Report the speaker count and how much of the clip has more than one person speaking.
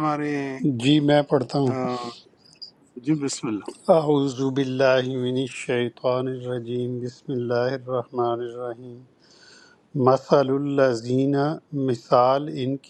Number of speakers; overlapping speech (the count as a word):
two, about 1%